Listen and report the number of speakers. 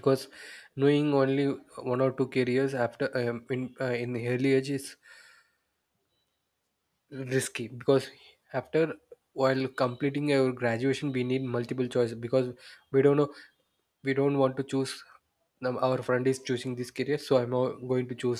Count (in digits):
1